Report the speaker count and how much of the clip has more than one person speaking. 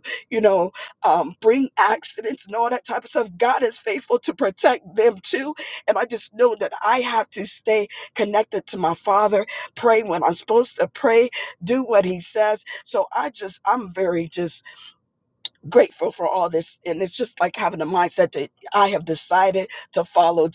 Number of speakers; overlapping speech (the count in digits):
1, no overlap